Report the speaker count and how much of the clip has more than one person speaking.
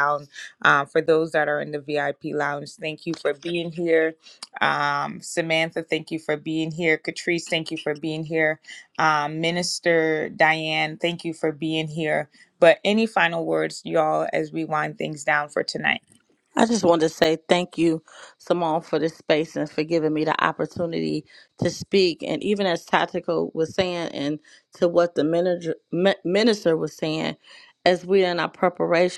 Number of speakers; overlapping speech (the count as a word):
two, no overlap